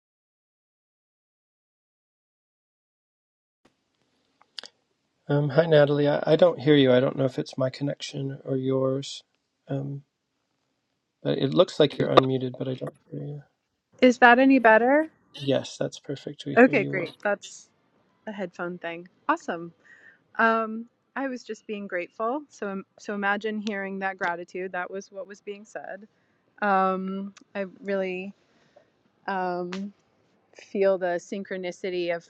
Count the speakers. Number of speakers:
two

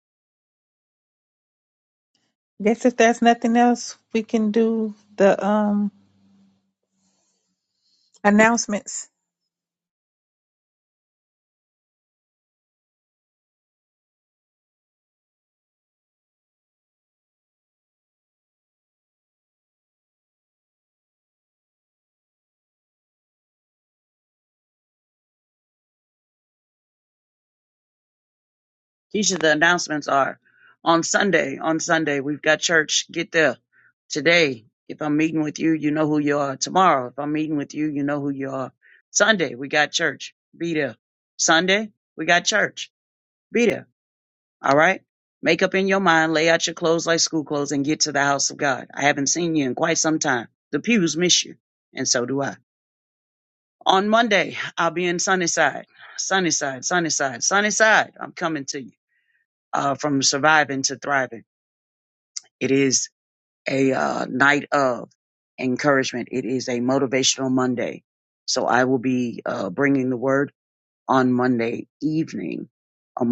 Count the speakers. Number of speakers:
two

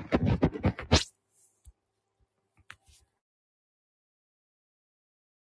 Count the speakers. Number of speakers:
zero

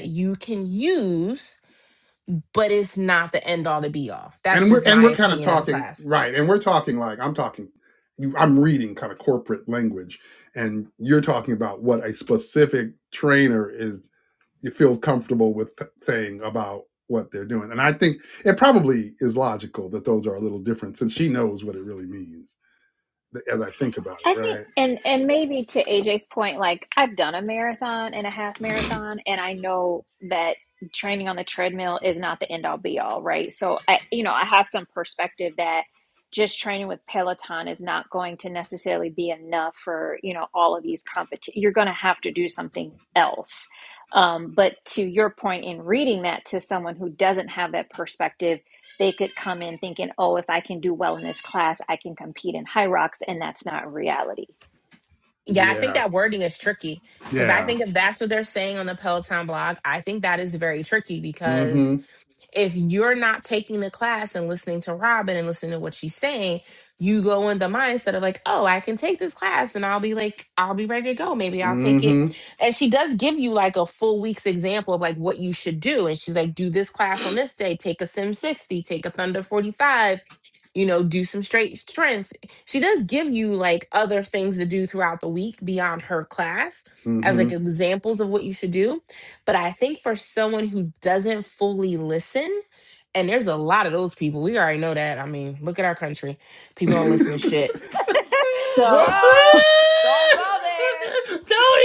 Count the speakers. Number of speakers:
four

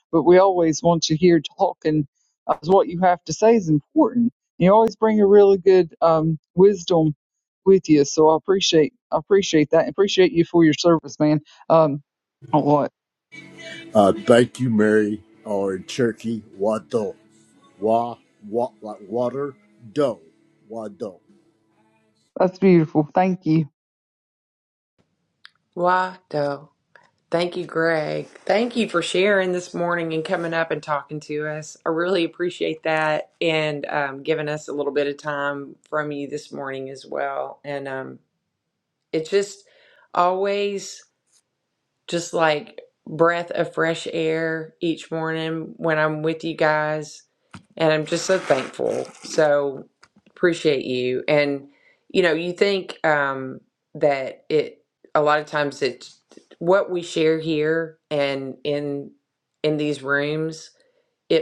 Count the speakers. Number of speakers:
three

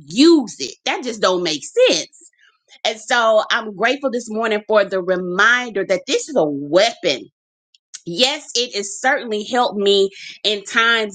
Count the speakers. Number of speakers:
one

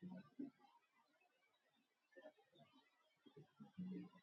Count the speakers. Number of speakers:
zero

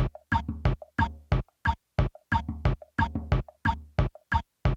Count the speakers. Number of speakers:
zero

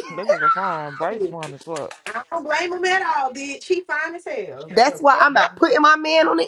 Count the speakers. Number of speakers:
three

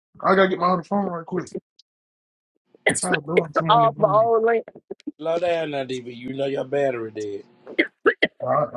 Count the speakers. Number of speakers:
three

